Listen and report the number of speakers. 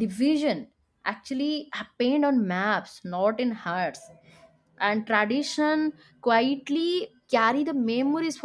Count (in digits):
1